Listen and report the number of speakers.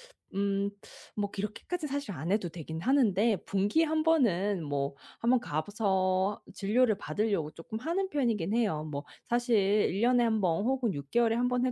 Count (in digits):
1